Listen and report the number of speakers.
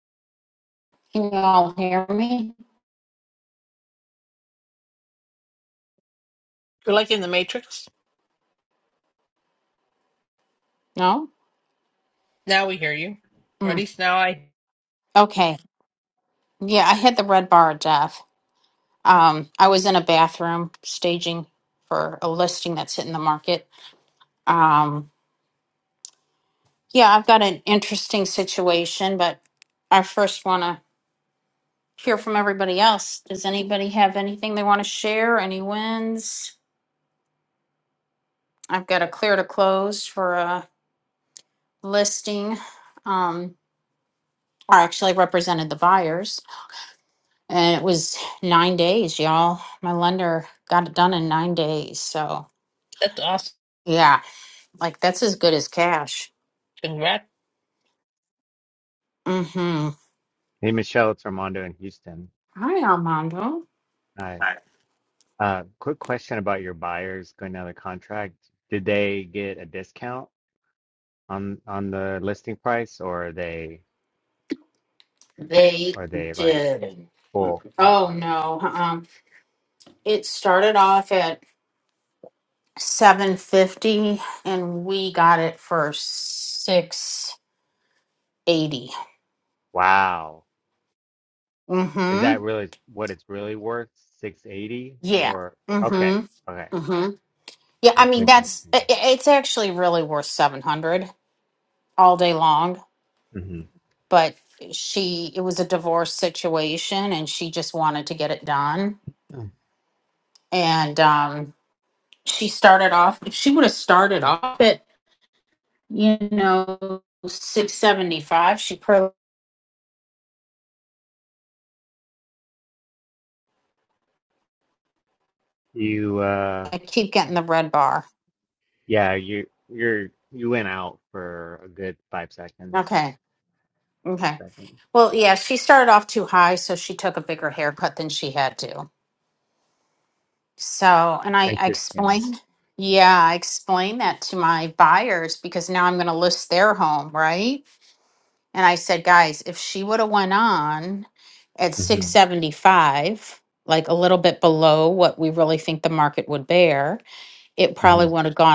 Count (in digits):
3